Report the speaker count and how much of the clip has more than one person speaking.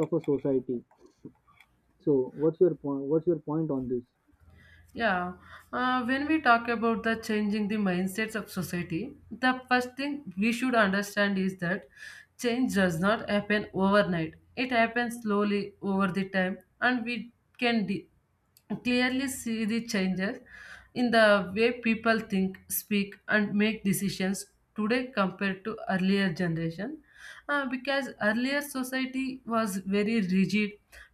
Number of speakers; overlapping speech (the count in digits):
2, no overlap